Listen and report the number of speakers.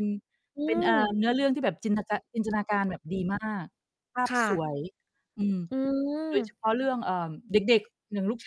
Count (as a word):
two